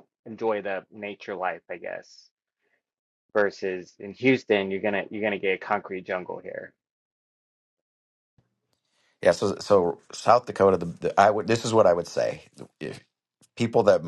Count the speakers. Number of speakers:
2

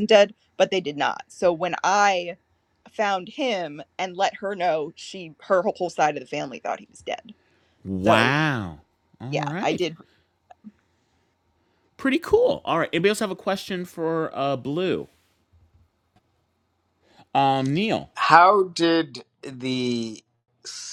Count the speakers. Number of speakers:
3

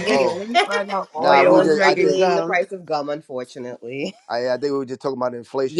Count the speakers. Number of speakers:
3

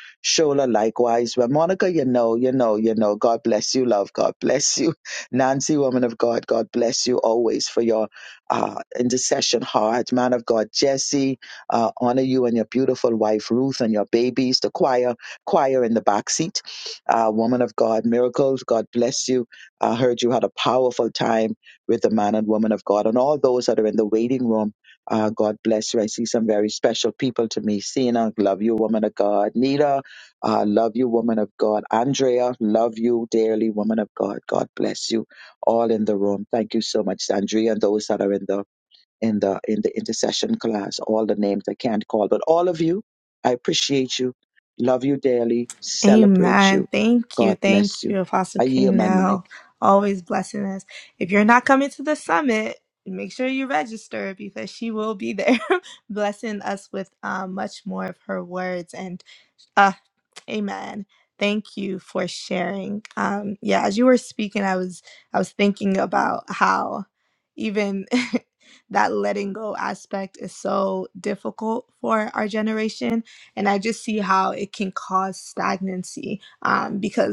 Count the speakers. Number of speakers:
2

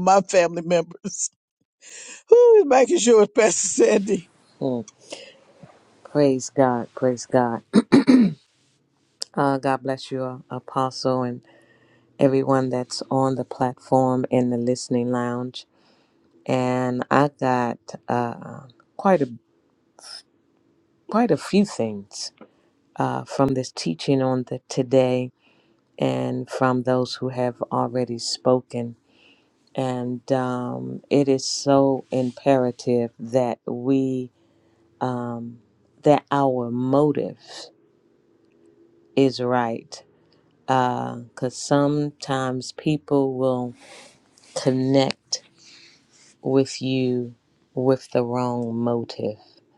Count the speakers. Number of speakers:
2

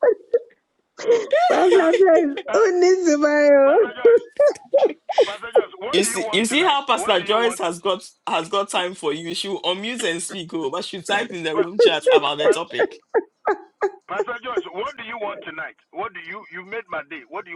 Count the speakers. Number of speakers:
3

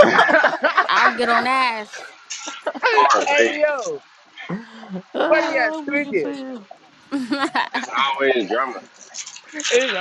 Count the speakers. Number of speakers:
4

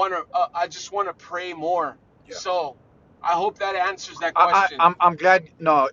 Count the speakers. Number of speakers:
2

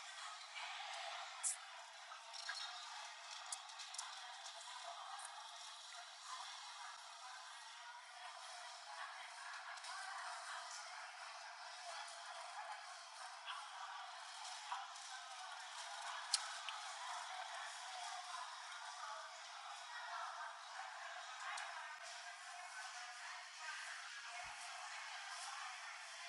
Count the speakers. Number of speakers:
0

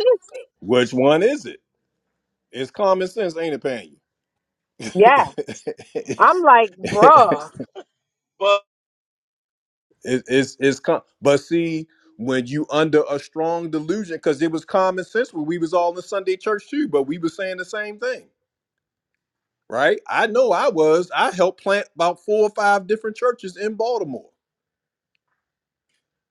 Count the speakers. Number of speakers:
2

